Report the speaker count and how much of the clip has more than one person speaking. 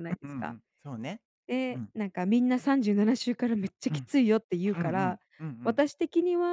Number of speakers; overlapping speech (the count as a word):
two, about 17%